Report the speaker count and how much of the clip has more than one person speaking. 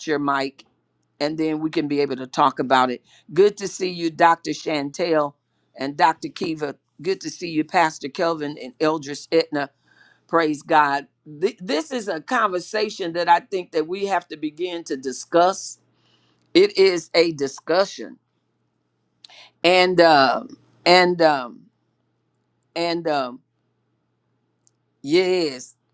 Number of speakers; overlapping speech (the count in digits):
1, no overlap